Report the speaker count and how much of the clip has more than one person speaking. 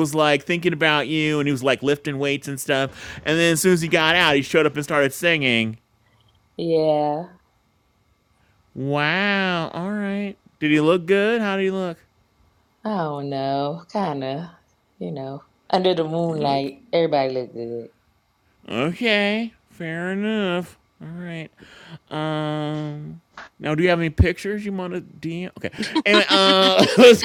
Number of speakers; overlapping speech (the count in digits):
2, about 1%